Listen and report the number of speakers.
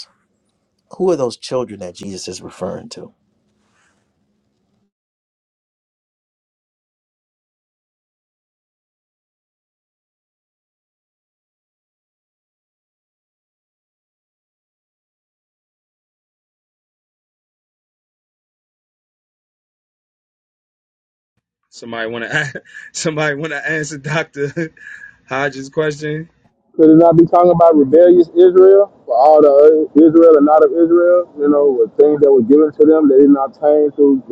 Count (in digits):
3